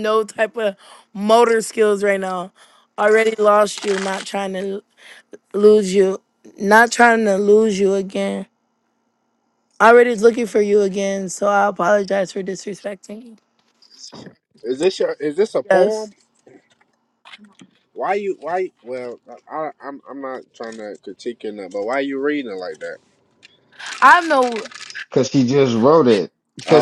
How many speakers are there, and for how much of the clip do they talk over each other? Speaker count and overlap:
3, about 2%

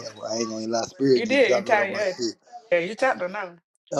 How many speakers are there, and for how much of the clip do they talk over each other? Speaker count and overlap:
2, about 27%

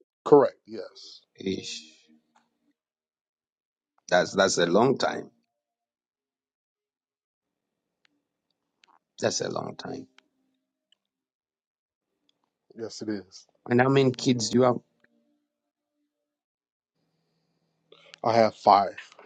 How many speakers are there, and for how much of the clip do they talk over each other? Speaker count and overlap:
2, no overlap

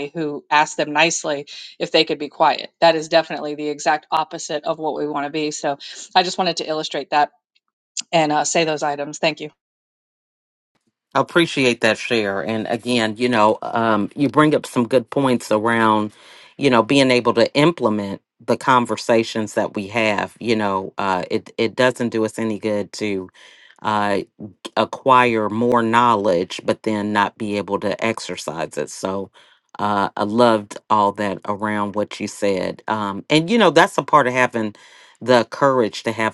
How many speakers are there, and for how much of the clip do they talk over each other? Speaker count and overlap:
2, no overlap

